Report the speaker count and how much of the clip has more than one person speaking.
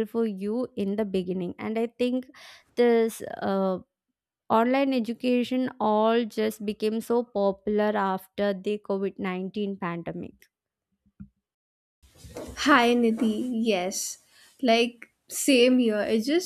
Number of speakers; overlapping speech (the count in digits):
2, no overlap